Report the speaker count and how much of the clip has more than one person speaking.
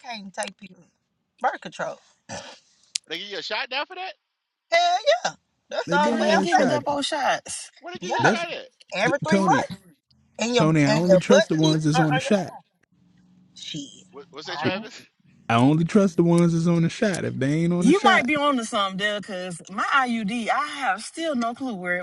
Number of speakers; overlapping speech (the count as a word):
four, about 18%